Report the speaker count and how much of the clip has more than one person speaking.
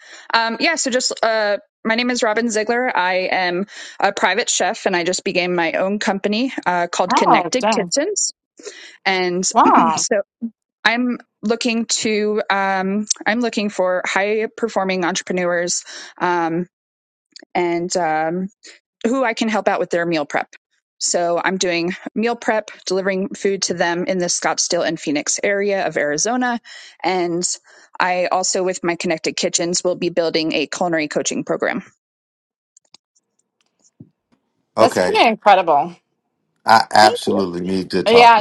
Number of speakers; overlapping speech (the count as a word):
three, about 4%